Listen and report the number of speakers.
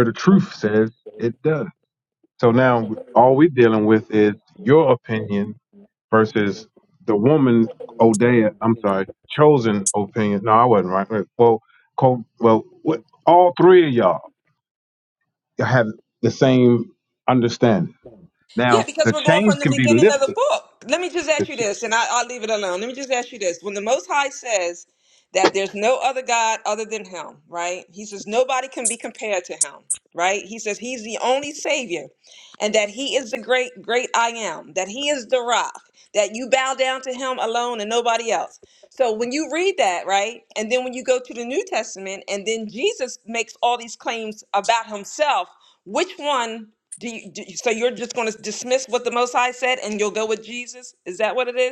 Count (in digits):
2